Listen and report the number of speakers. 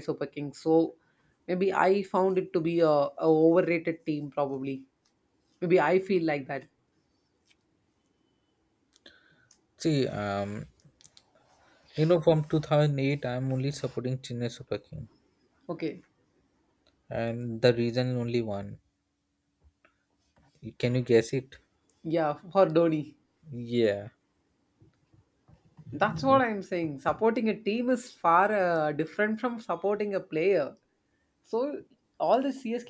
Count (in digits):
2